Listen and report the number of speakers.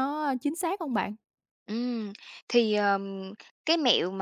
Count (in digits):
2